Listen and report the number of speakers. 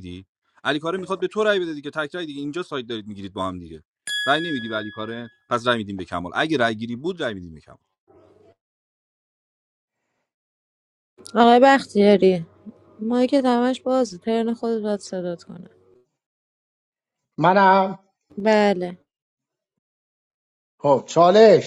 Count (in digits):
3